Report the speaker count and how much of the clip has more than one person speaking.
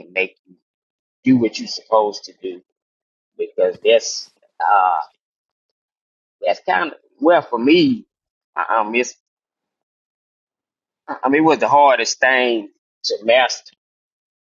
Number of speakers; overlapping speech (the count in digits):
1, no overlap